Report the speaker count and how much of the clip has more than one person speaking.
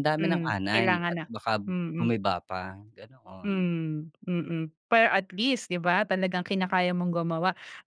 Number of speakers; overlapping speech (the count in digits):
2, about 18%